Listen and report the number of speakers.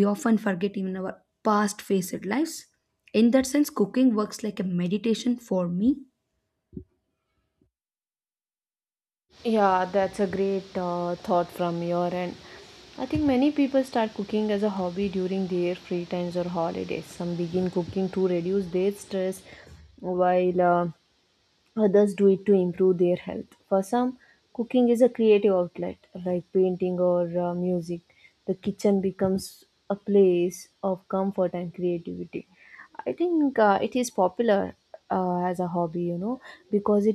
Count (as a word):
two